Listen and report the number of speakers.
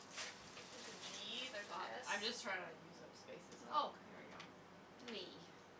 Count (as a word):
two